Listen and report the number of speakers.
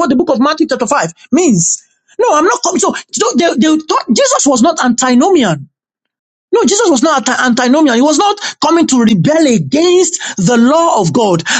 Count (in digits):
1